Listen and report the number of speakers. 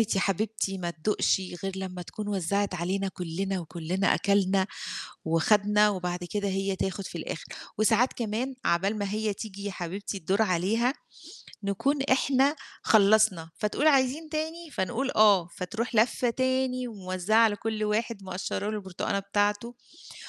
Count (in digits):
1